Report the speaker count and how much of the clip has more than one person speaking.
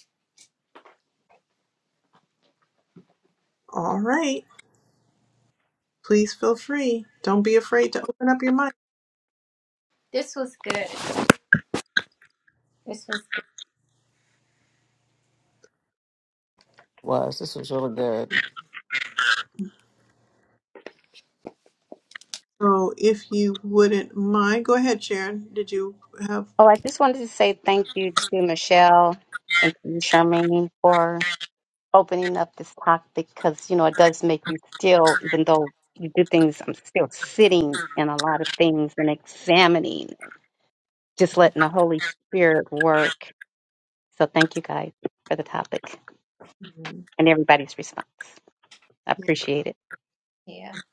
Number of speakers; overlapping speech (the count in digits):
4, under 1%